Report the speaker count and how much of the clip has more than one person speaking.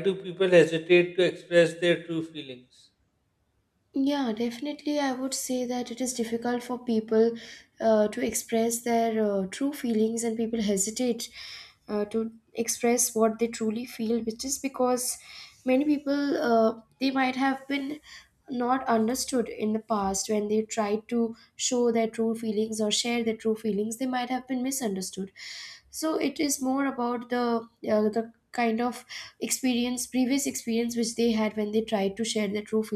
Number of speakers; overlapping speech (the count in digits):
2, no overlap